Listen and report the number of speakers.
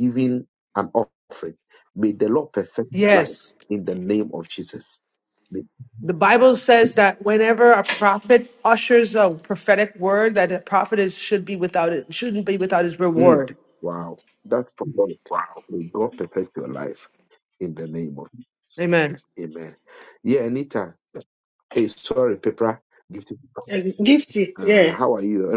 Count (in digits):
3